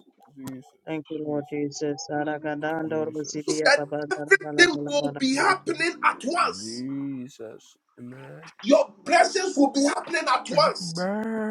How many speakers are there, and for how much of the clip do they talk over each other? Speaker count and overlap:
3, about 33%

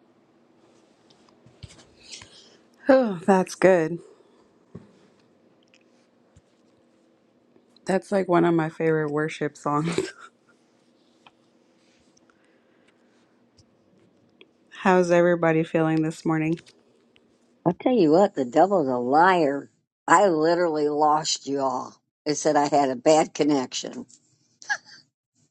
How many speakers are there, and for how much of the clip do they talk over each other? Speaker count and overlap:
2, no overlap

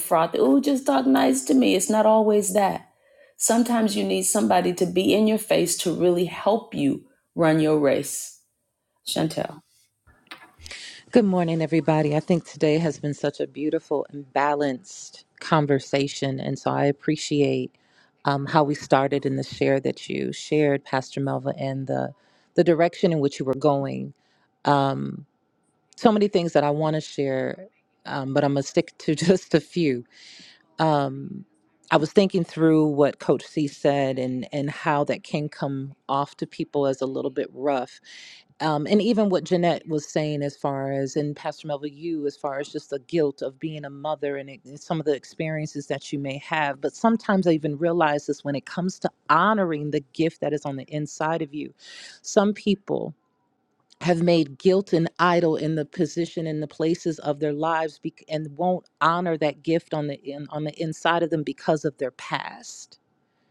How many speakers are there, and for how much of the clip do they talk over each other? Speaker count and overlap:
2, no overlap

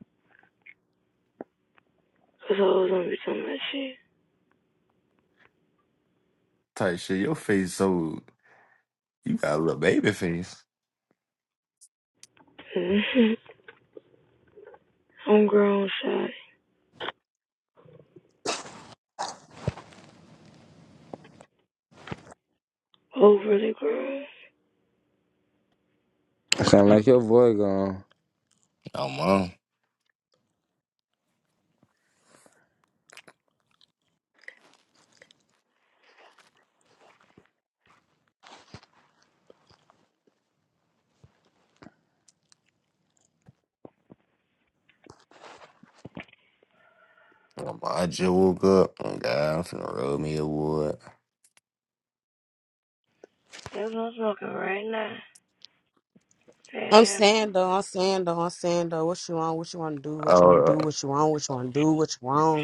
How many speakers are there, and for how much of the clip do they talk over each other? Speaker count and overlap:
4, about 1%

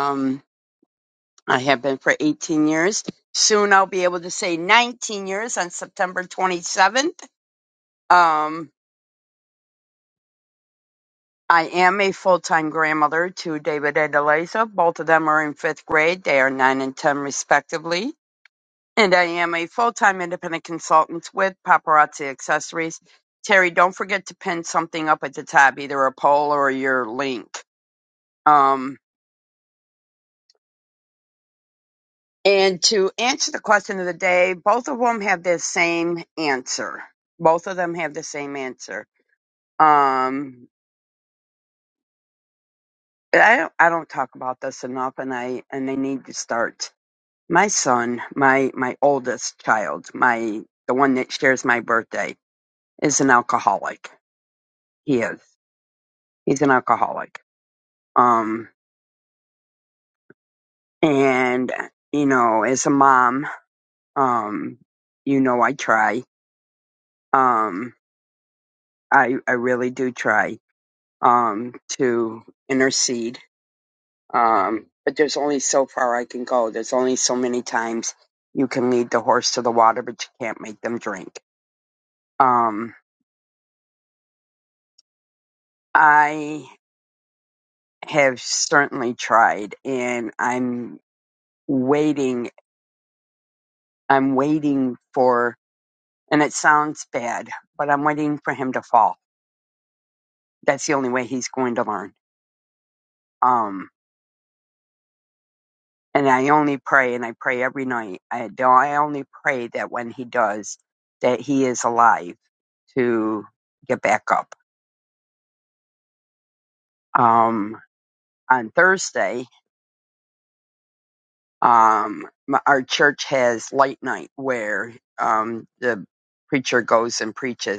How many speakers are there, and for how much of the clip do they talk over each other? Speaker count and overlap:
1, no overlap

